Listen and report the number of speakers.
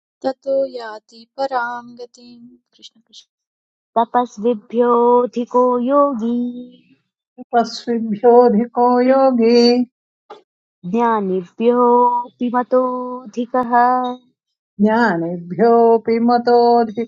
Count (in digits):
3